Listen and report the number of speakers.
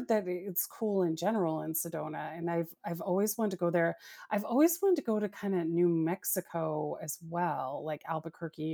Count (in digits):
1